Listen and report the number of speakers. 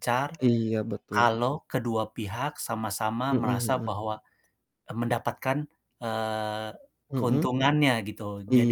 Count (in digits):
2